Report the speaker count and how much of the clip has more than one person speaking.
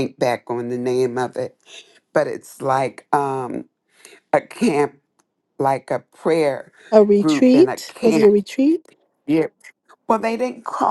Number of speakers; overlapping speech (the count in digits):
2, about 10%